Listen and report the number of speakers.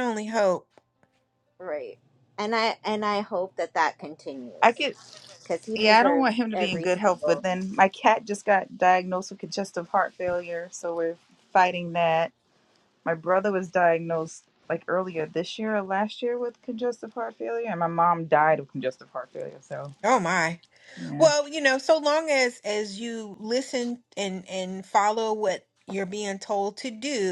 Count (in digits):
3